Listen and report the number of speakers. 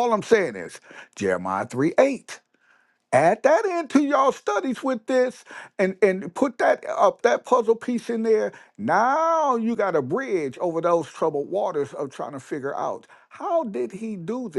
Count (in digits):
1